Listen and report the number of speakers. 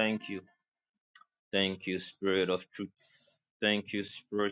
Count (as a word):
one